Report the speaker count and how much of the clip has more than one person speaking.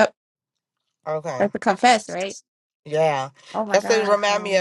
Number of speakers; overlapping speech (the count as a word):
two, about 21%